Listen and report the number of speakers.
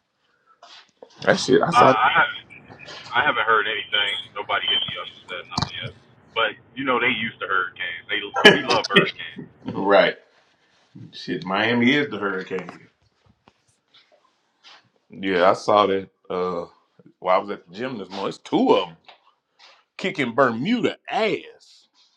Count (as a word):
two